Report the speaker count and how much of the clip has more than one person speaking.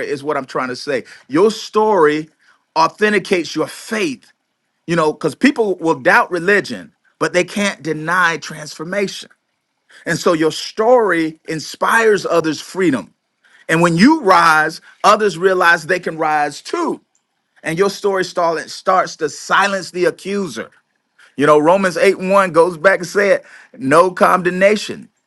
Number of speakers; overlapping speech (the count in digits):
1, no overlap